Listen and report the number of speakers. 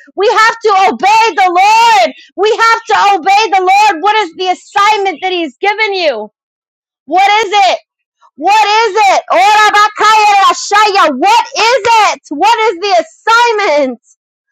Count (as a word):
one